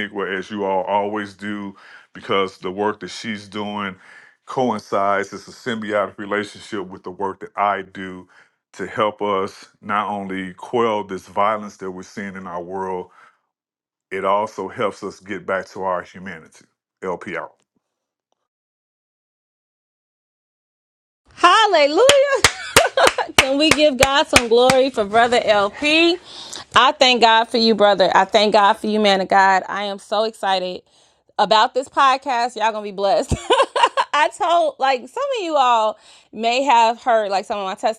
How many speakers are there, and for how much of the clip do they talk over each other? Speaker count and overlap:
2, no overlap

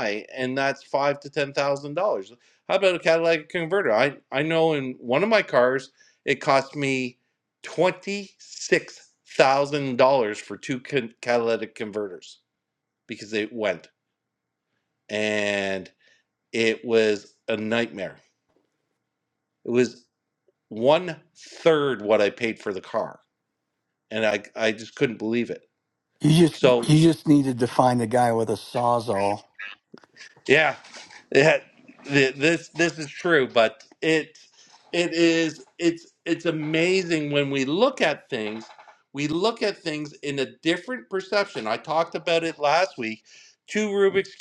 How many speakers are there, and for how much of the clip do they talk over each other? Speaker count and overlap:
2, about 1%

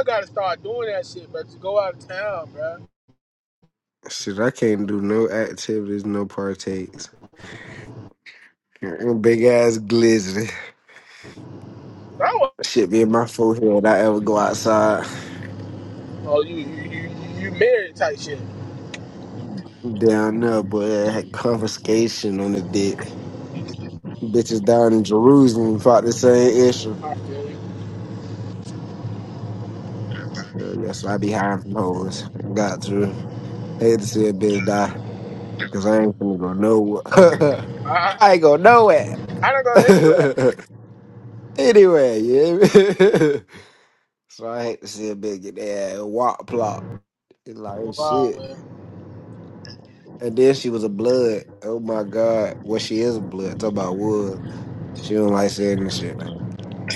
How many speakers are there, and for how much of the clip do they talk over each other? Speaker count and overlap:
2, about 1%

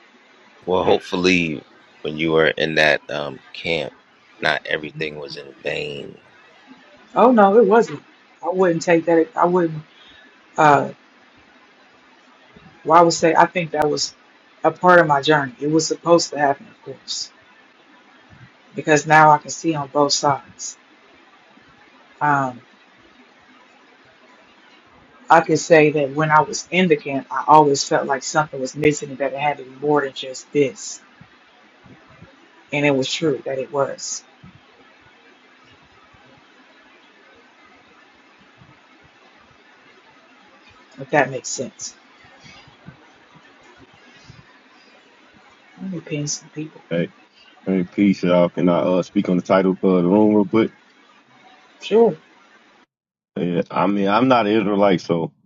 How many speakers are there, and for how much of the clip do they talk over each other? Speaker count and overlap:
3, no overlap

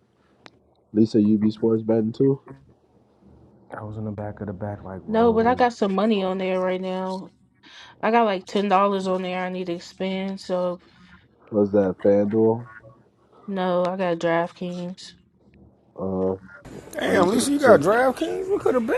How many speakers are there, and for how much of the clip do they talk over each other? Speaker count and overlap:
4, about 6%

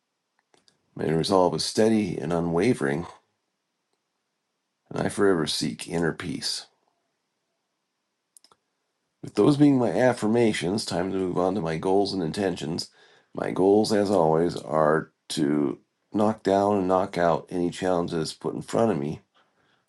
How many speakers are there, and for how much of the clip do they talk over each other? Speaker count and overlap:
1, no overlap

